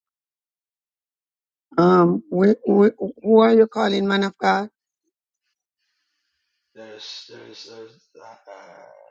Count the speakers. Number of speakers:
2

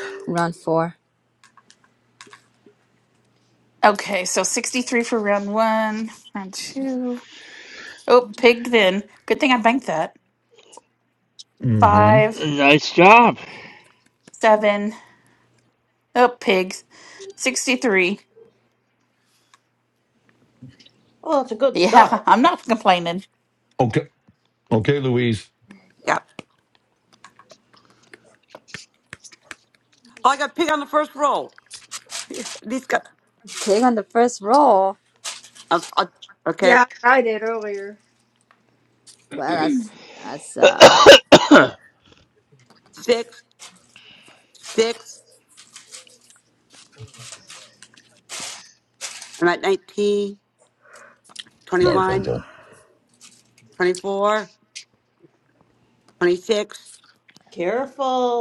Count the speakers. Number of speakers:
7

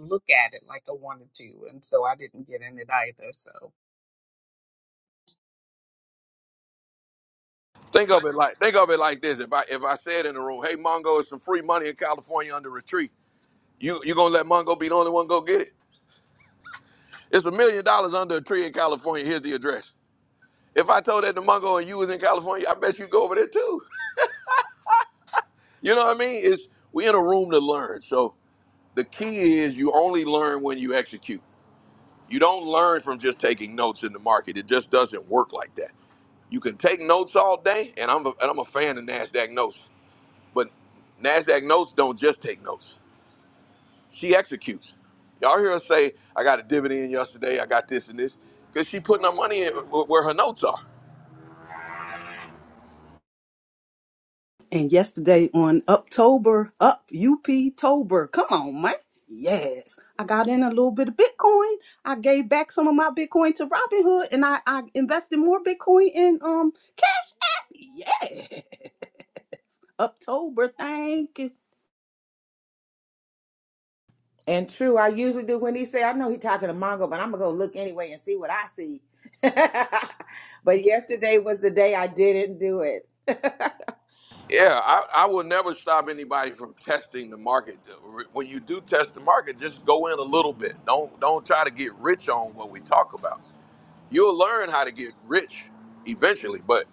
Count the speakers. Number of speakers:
4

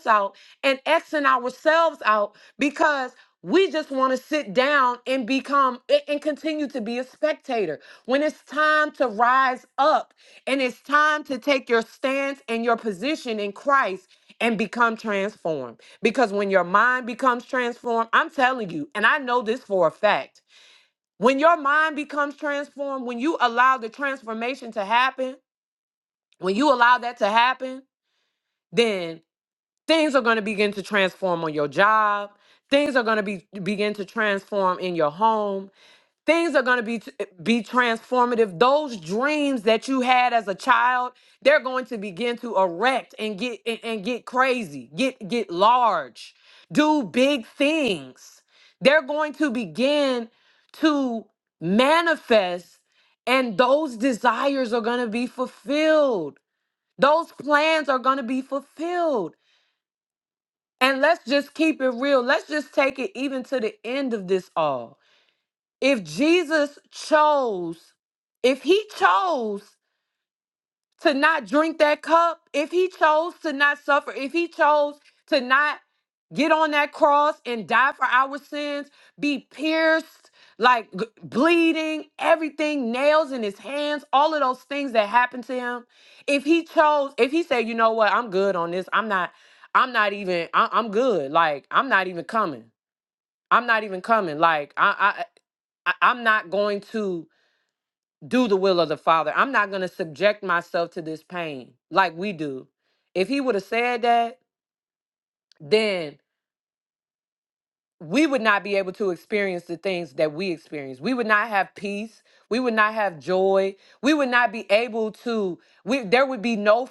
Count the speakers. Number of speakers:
1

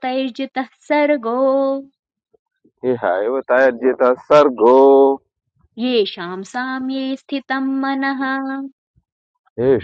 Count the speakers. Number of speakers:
2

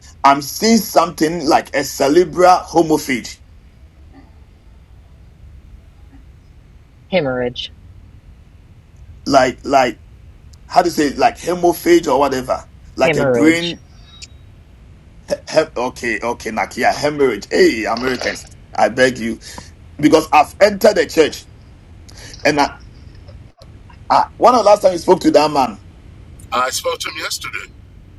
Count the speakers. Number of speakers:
3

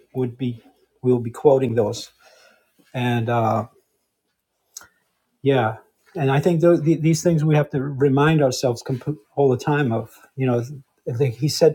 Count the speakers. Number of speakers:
1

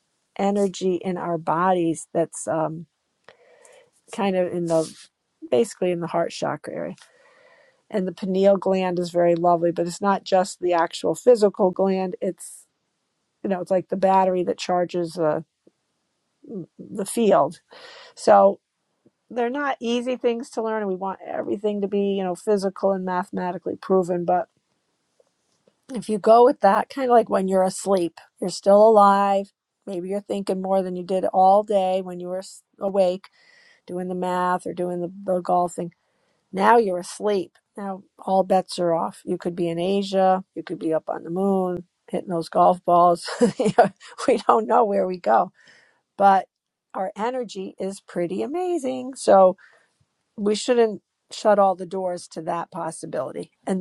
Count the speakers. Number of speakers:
1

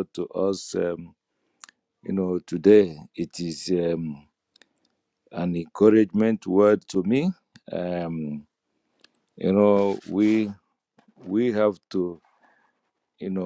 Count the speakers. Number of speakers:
1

